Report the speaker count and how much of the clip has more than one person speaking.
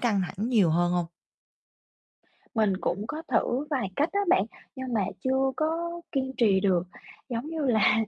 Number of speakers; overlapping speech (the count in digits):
2, no overlap